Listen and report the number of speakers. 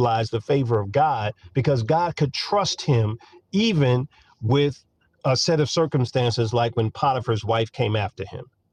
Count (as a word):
one